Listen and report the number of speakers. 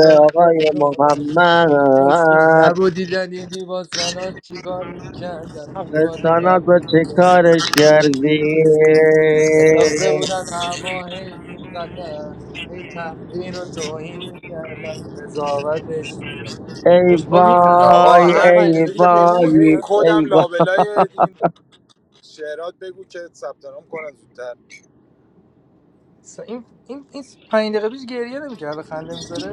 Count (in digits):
3